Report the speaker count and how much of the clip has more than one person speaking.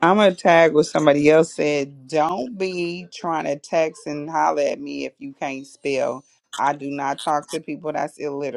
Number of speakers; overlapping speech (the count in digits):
1, no overlap